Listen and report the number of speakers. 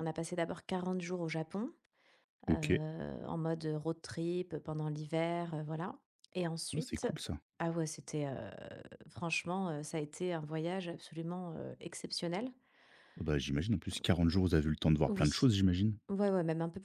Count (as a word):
two